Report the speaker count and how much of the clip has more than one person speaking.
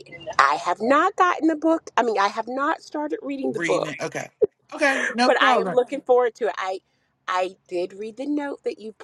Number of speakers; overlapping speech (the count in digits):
2, about 10%